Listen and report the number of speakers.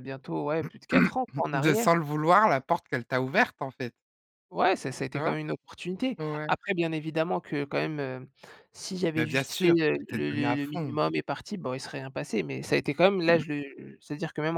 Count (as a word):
two